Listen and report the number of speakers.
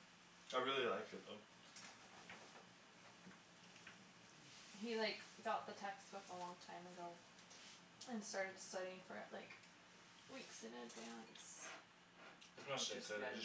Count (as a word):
two